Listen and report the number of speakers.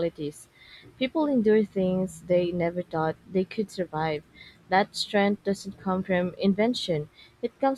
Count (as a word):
one